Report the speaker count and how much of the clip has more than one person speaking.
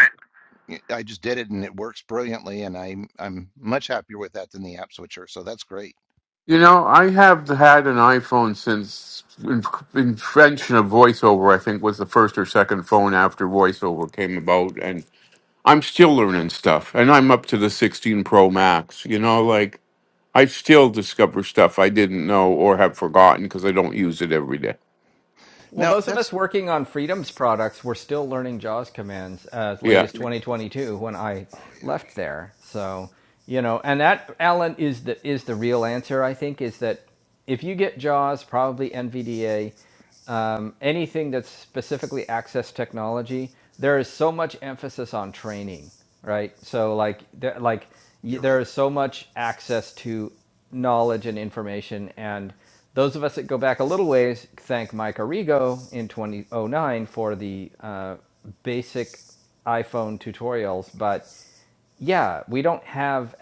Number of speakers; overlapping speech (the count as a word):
three, about 2%